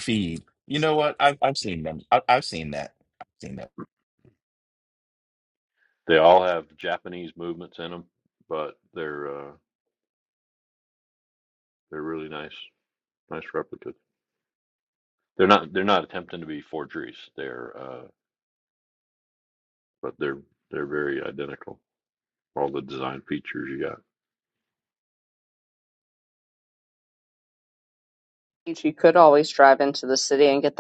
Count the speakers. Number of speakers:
three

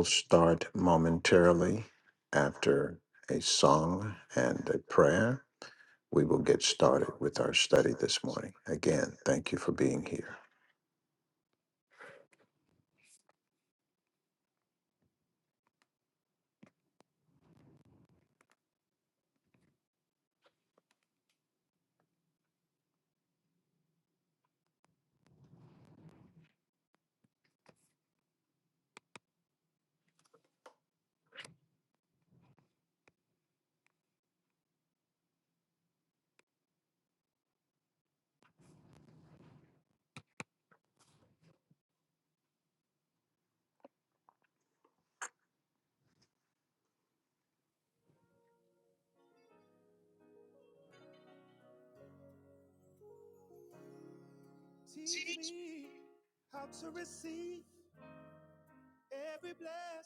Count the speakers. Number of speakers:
two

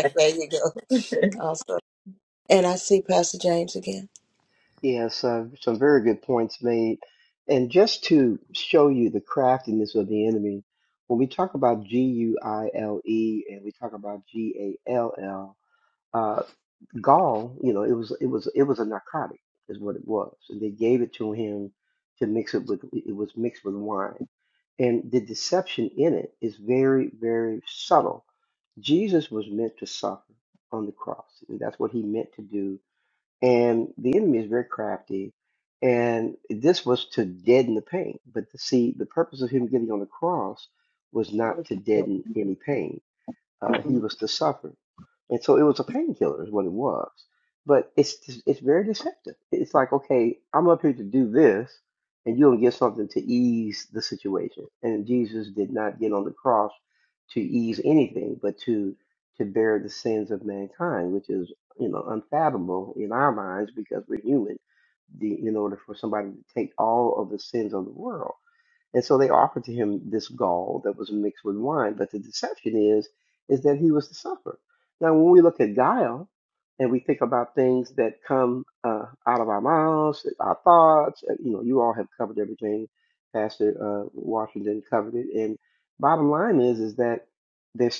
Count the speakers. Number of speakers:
two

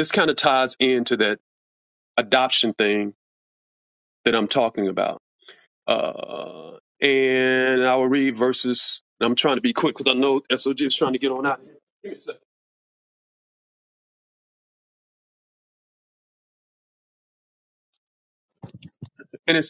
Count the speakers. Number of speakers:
one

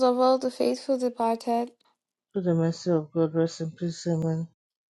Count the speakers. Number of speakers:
two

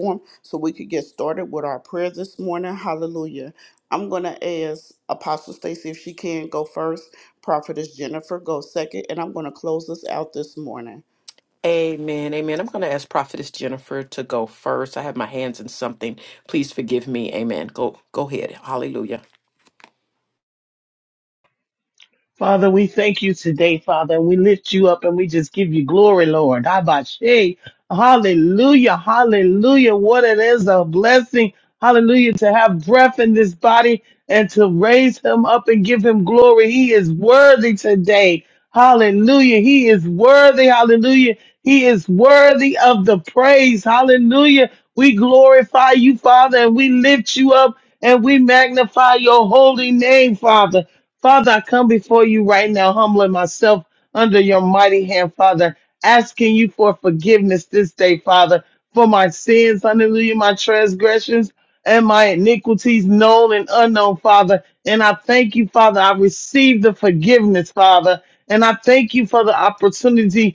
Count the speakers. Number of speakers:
three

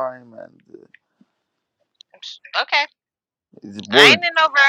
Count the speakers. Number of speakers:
two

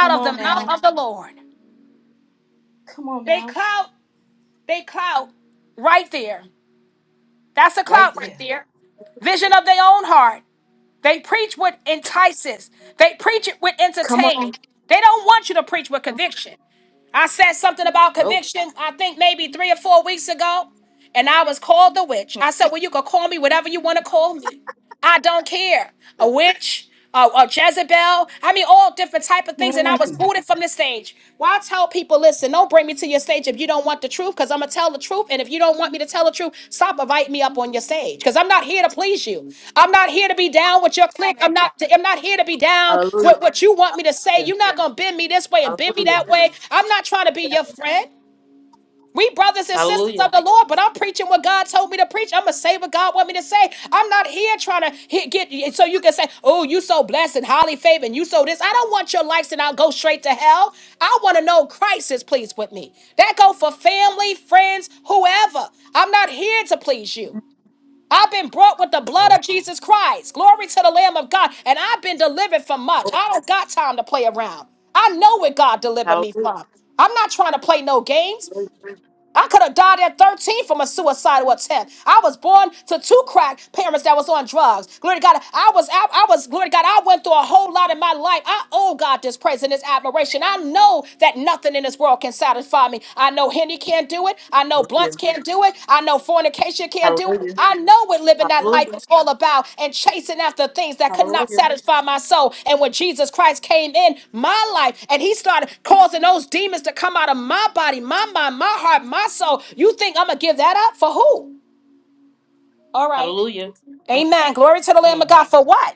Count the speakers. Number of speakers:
two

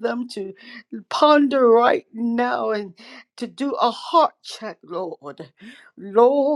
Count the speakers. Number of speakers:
one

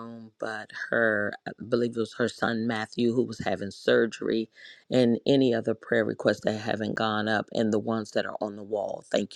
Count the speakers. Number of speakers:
one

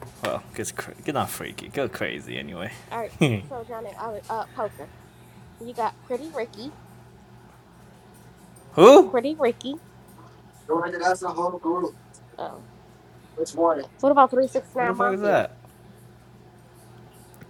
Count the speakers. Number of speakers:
three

